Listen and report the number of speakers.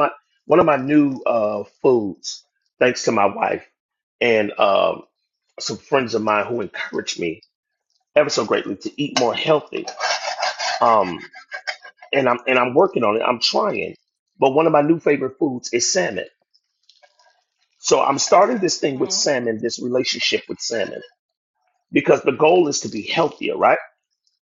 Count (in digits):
1